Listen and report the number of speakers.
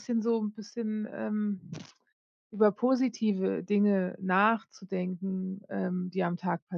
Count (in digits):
1